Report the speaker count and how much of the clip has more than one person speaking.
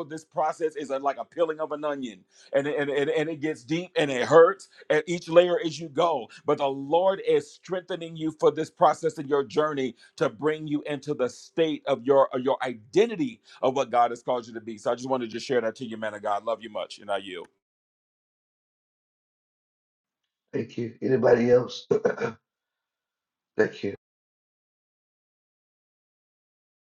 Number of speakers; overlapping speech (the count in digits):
2, no overlap